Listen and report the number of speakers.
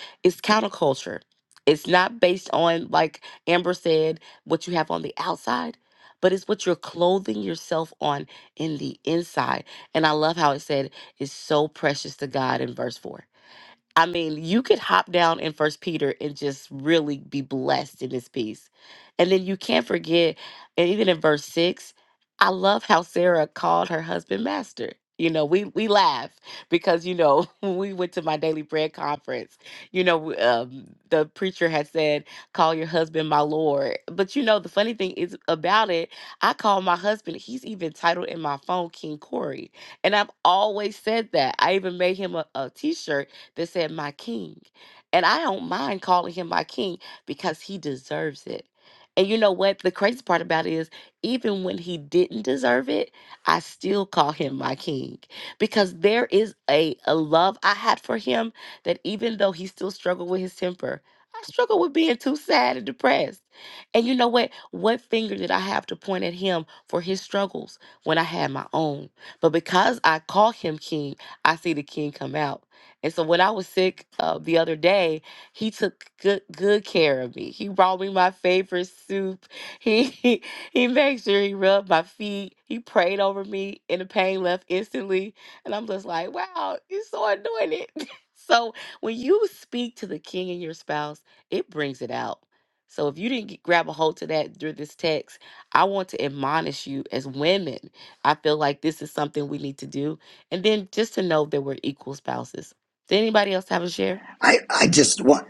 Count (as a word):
two